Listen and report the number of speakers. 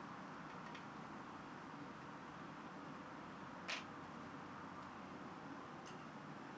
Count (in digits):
0